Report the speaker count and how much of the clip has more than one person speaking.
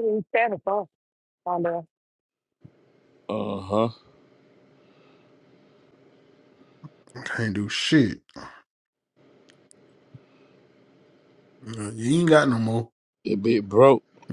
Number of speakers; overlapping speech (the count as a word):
three, no overlap